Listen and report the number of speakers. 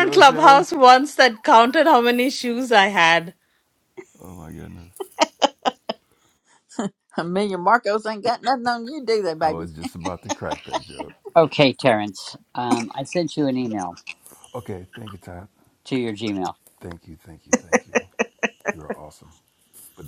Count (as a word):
four